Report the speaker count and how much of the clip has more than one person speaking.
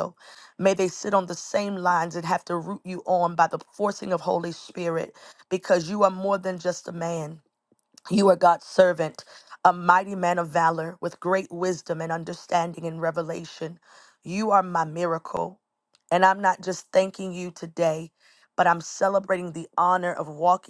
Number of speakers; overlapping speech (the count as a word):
one, no overlap